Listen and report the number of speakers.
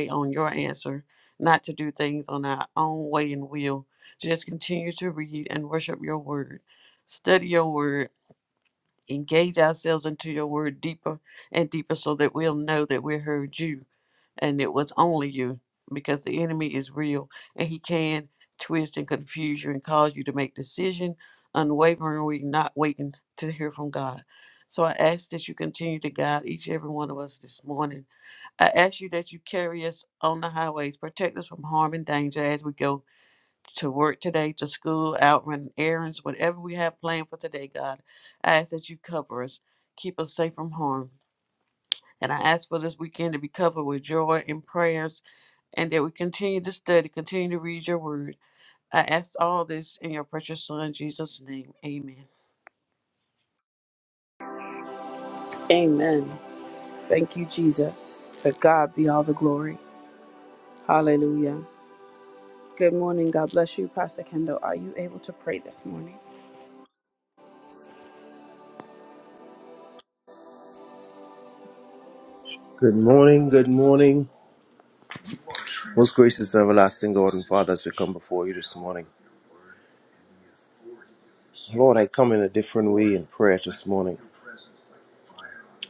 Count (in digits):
3